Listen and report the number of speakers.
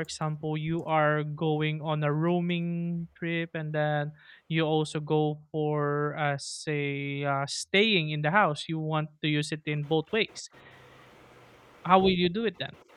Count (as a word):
one